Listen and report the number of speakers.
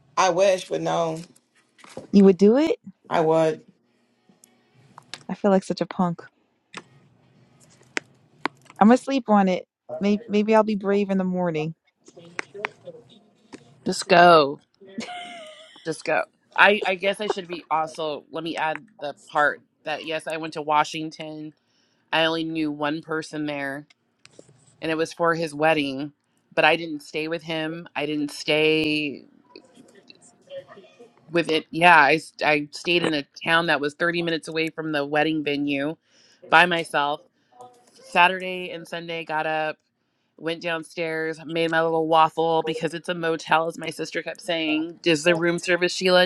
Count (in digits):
3